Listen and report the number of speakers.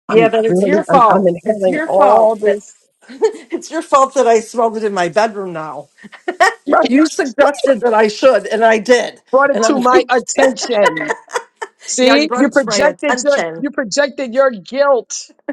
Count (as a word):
two